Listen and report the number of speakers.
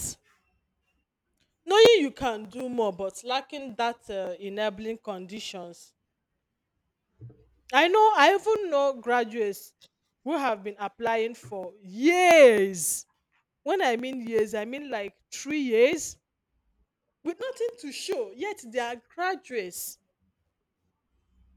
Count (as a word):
one